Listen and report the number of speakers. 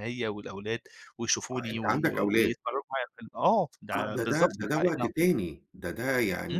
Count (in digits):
2